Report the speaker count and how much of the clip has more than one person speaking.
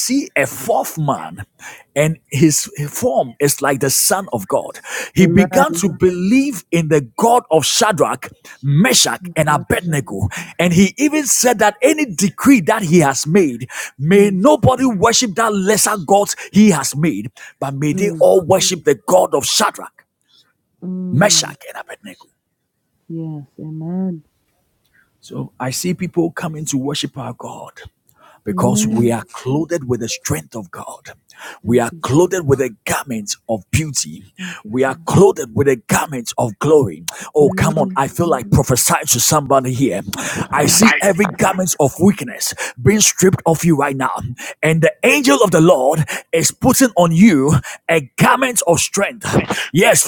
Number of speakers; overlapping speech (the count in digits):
2, about 9%